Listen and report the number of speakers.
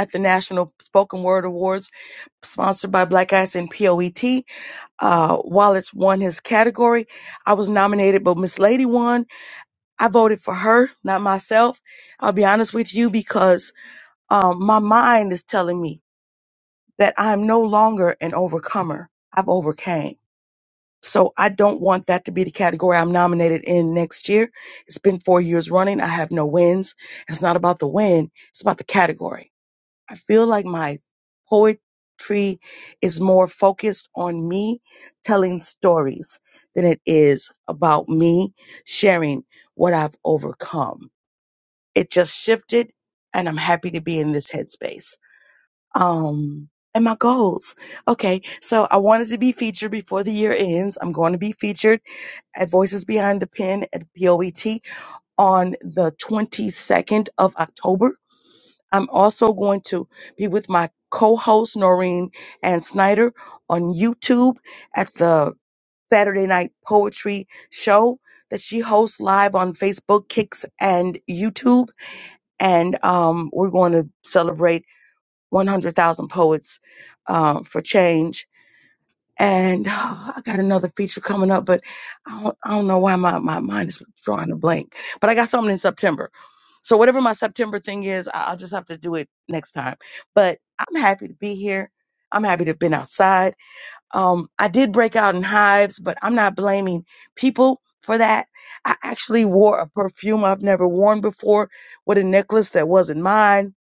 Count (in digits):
1